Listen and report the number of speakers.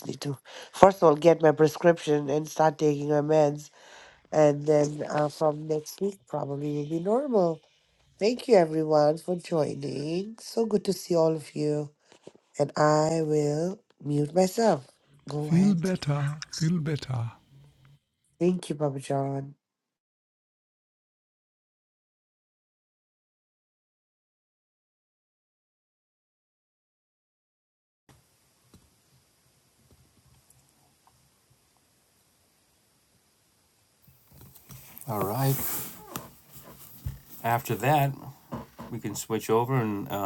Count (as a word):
three